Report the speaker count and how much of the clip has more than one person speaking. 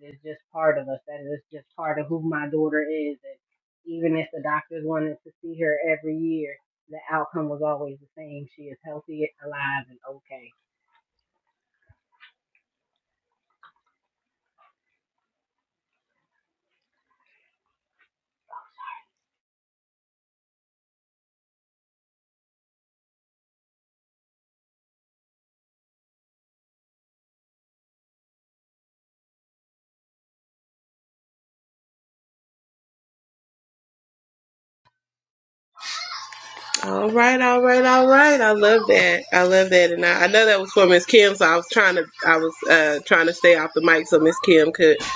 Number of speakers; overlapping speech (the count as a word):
two, no overlap